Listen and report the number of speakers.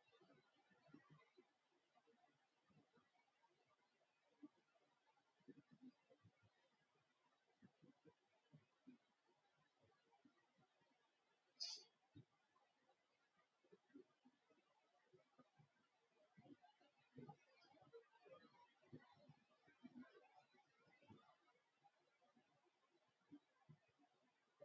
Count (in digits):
0